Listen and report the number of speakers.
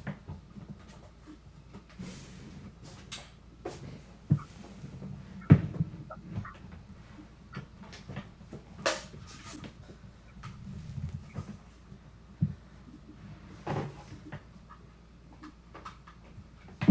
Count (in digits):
0